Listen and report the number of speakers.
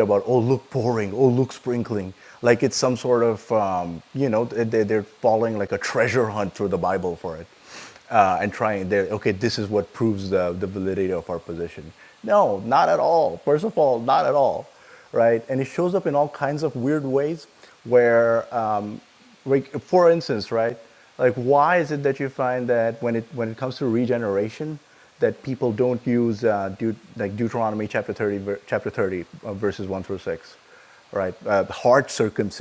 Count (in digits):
1